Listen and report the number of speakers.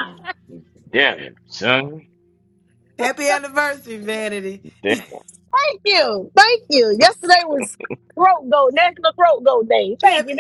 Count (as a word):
three